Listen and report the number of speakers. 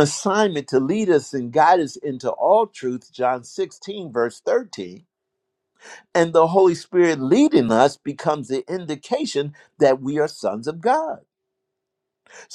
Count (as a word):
one